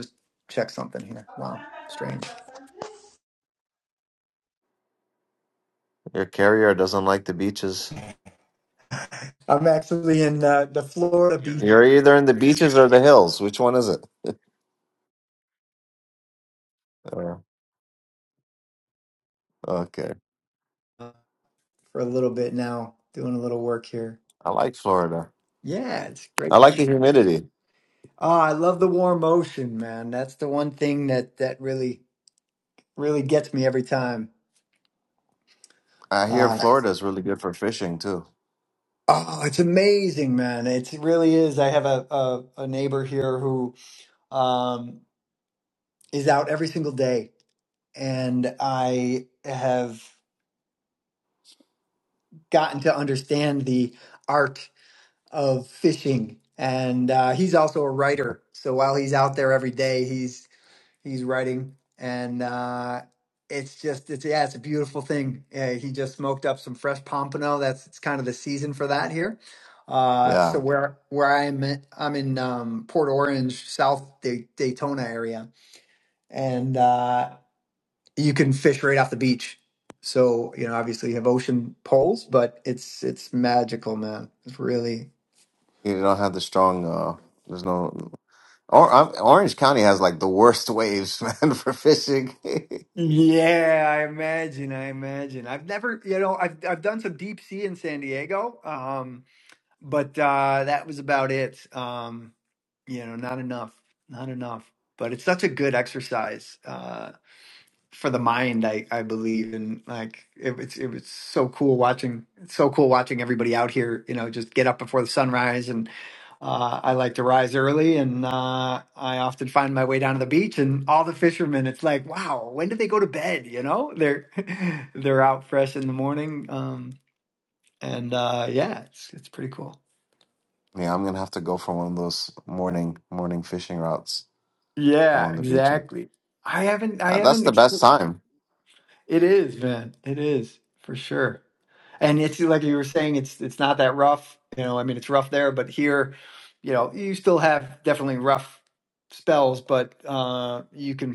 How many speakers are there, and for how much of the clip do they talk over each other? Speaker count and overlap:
2, about 2%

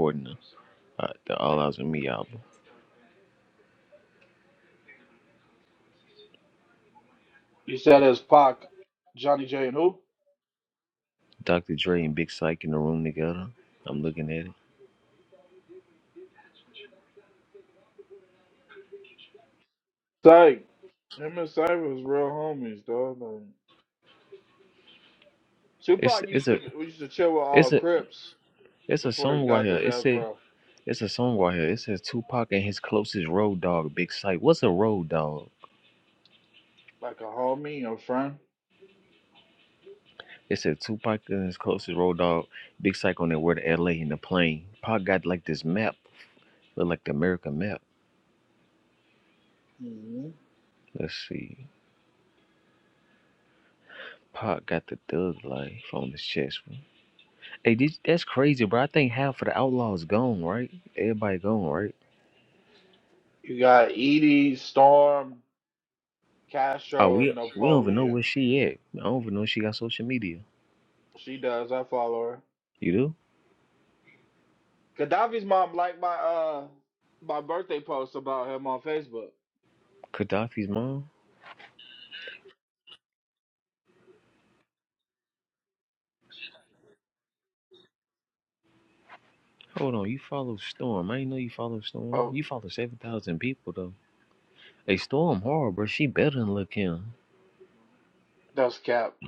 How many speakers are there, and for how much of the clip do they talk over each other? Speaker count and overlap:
2, about 4%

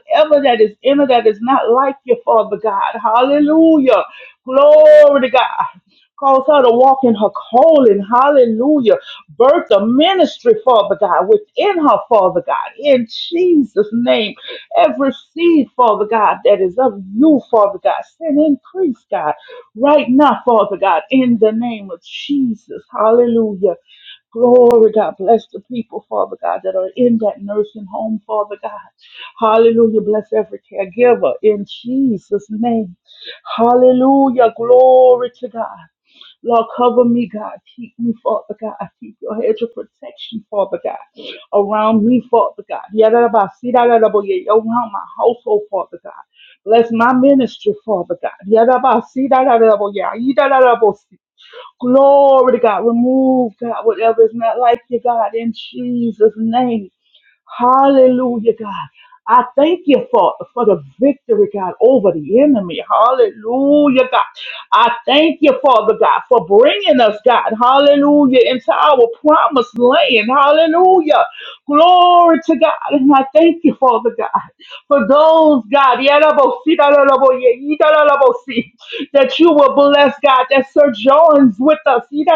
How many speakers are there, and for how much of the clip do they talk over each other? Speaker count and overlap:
1, no overlap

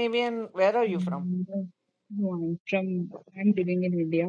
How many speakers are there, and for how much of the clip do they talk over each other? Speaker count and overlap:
2, about 8%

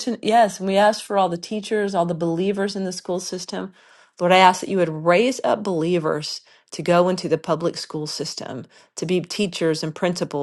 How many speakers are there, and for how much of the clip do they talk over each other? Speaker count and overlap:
1, no overlap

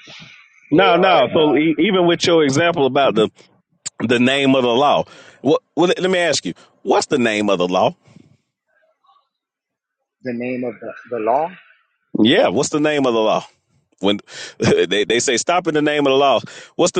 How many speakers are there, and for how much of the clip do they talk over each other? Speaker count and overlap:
2, about 5%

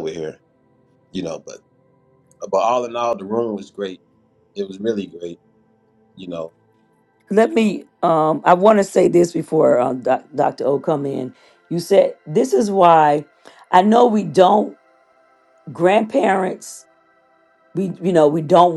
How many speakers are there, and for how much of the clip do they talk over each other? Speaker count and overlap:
2, no overlap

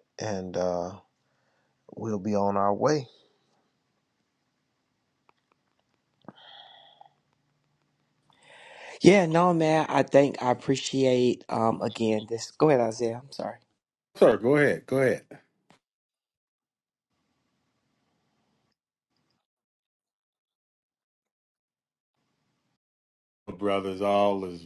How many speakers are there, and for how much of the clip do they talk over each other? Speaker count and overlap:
3, no overlap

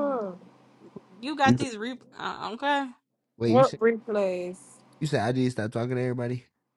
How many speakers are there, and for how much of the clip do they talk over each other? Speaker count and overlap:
3, about 8%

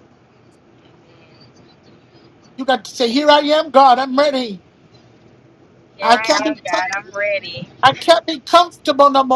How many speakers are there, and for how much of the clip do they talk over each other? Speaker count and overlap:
2, about 9%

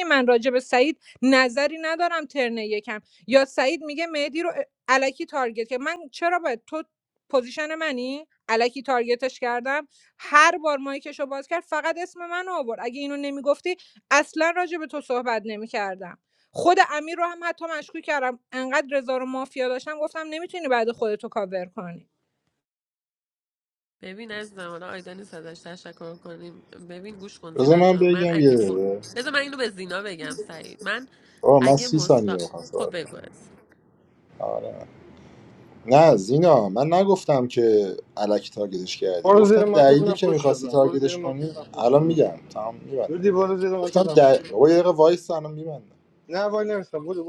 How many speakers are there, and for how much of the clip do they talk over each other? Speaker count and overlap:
4, about 13%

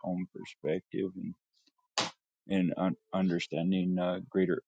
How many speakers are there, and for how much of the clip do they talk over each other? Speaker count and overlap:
1, no overlap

